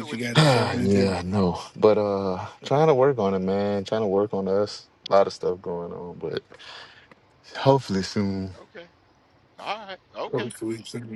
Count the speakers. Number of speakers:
3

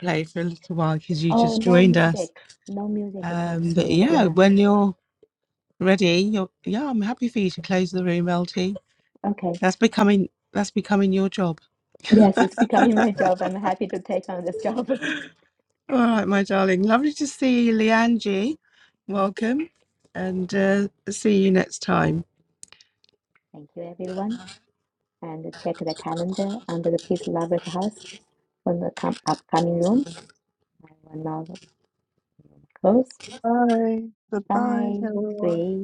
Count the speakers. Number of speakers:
3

